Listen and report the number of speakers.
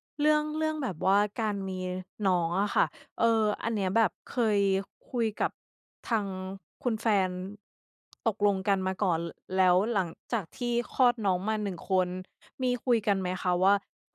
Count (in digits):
1